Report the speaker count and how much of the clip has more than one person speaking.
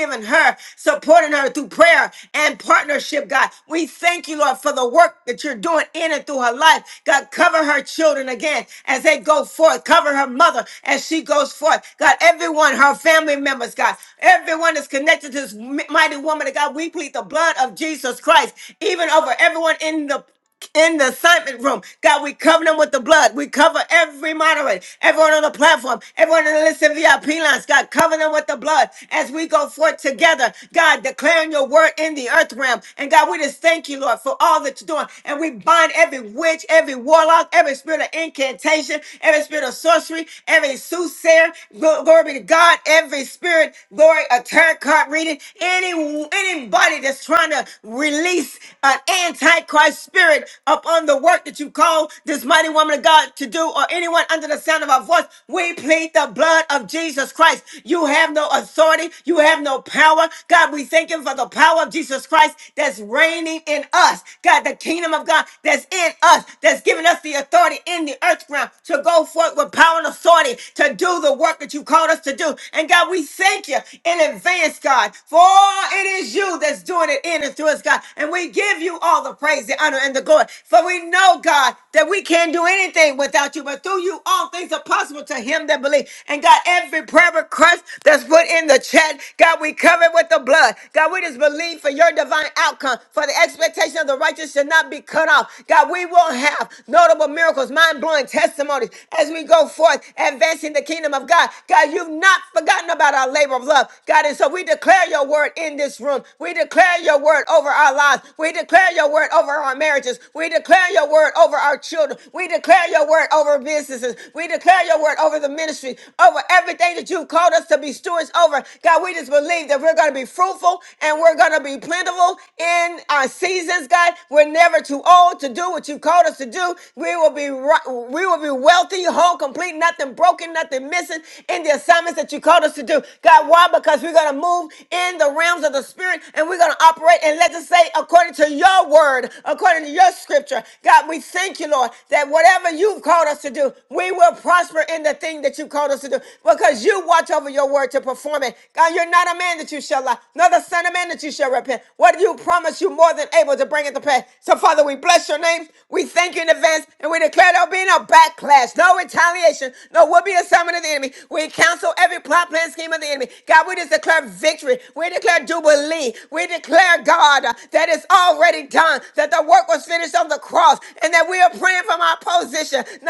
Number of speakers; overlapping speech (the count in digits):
1, no overlap